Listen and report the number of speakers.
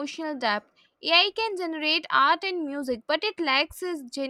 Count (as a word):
one